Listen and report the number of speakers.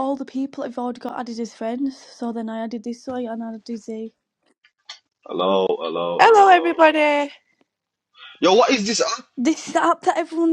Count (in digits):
3